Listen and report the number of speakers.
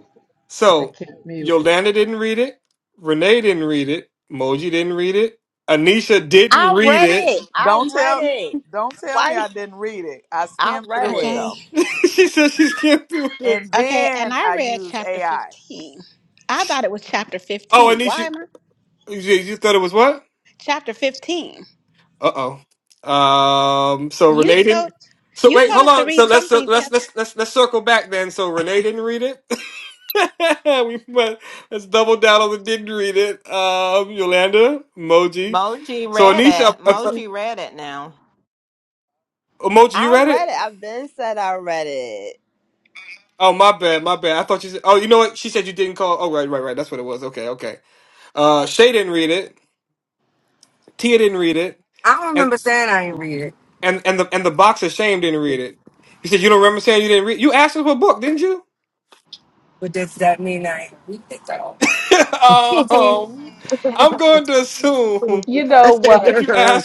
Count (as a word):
seven